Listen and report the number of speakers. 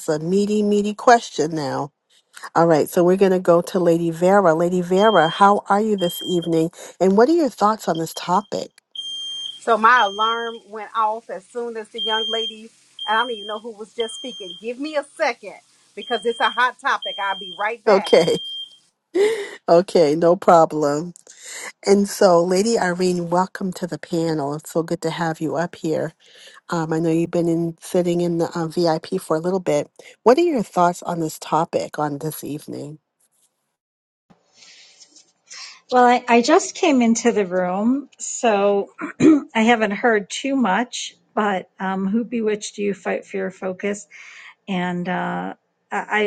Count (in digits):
3